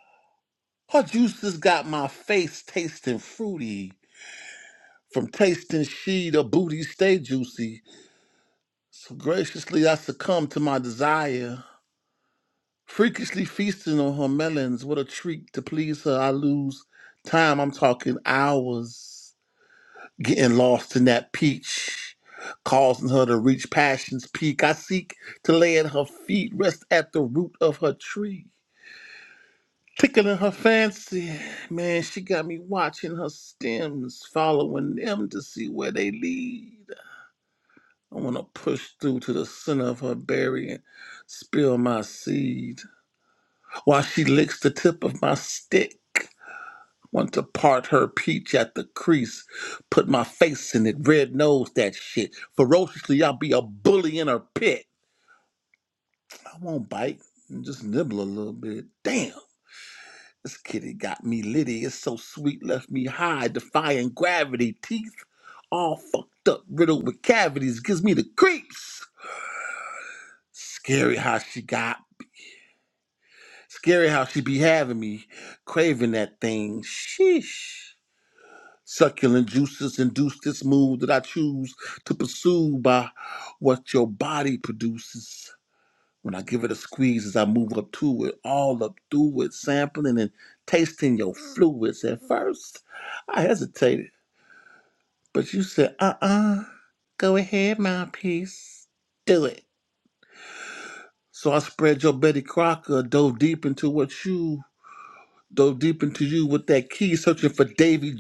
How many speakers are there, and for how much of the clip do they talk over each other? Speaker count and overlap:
one, no overlap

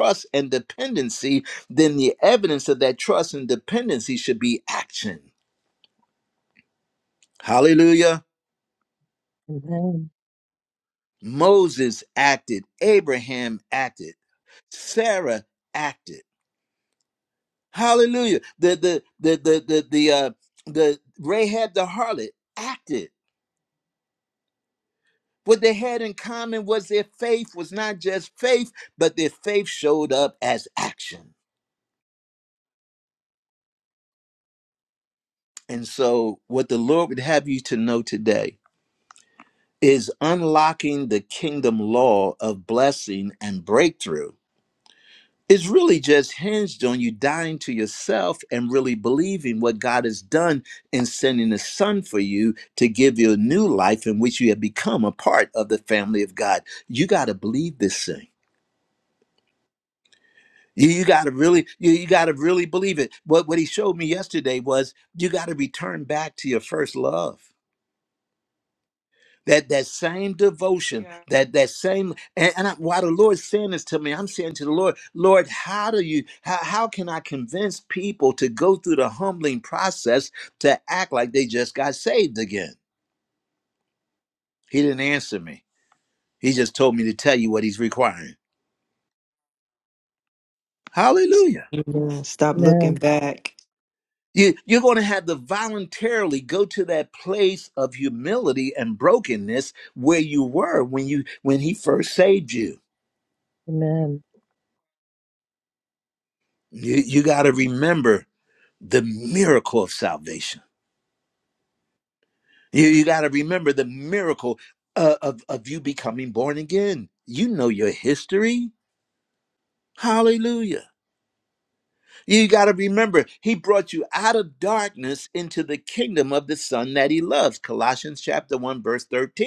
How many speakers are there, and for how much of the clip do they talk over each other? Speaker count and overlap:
three, under 1%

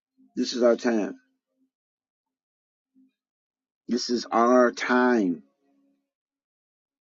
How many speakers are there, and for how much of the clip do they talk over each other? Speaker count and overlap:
one, no overlap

